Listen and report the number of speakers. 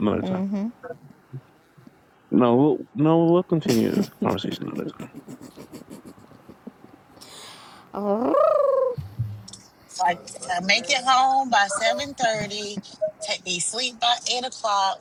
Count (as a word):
three